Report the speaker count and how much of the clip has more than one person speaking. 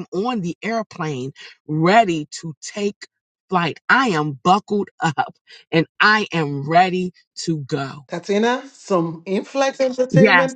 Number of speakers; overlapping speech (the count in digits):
2, about 3%